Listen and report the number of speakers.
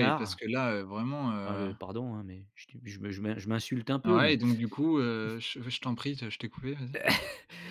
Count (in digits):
2